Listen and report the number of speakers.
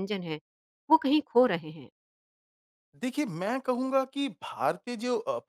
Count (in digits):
2